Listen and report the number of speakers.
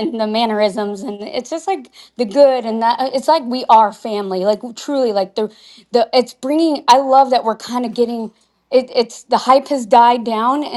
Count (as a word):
one